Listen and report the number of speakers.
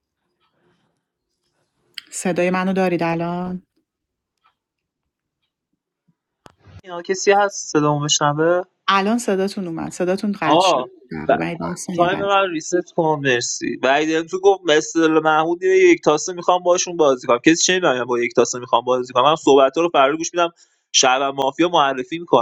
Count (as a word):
two